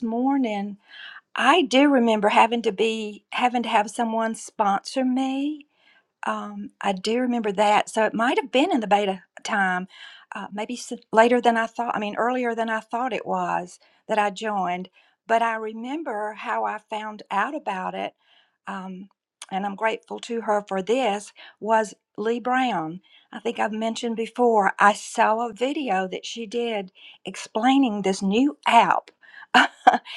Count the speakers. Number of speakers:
1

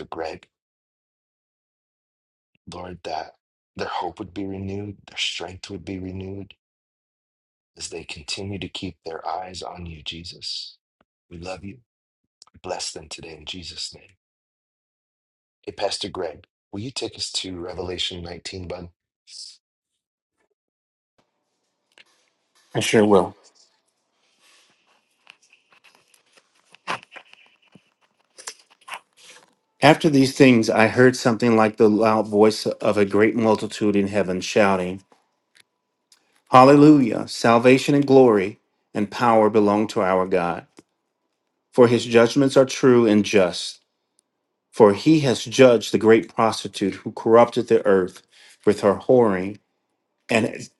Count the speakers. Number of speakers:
2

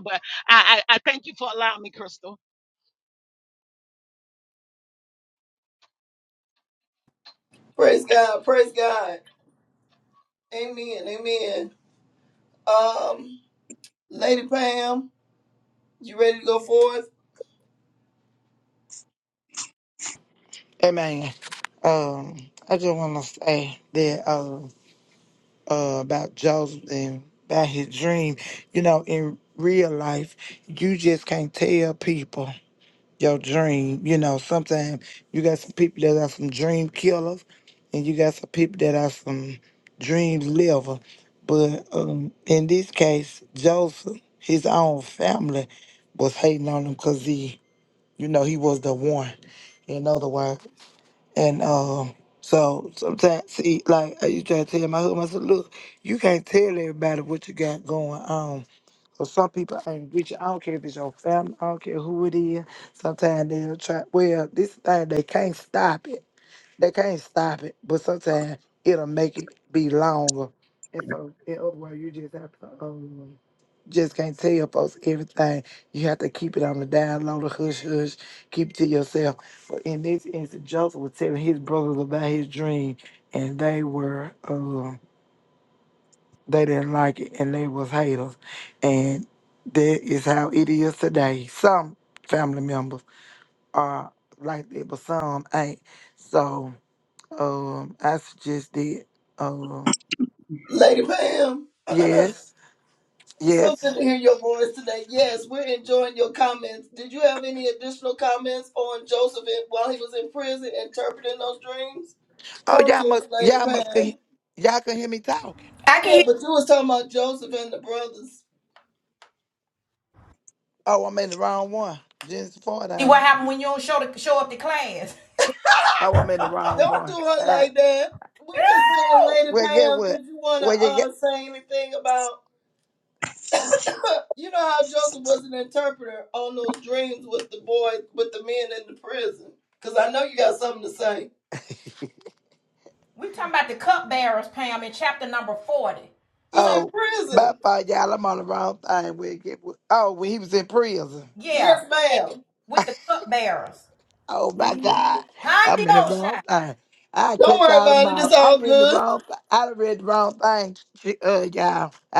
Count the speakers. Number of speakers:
4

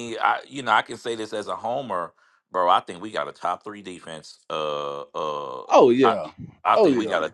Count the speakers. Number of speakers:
2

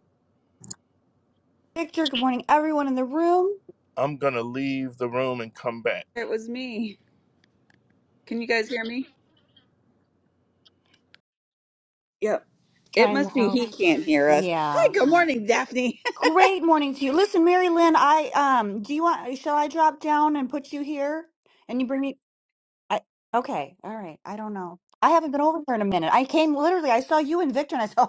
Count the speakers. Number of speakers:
3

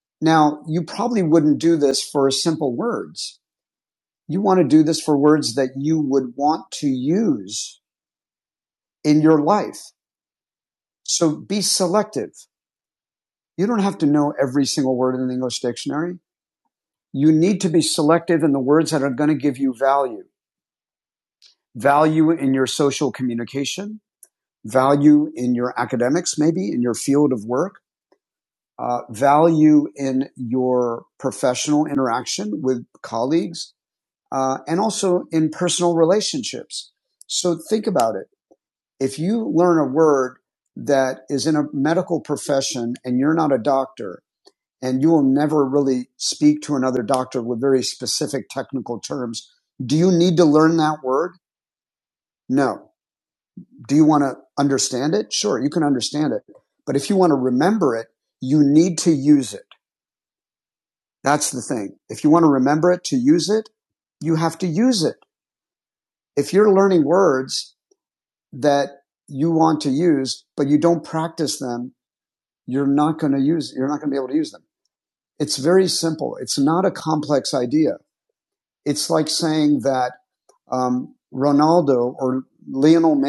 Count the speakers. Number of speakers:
1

